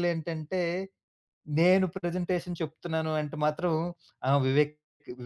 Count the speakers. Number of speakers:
1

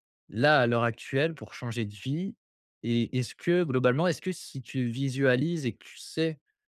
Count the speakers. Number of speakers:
1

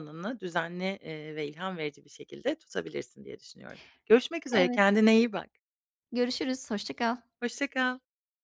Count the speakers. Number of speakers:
2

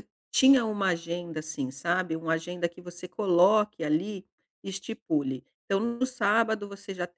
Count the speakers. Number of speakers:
1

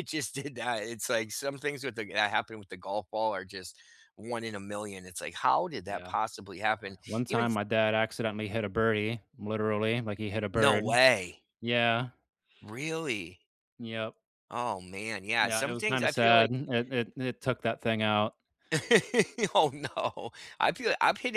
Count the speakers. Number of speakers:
2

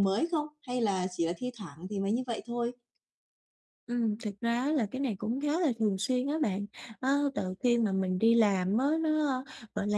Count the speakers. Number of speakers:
2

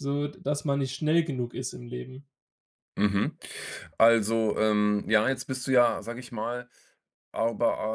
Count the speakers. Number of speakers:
2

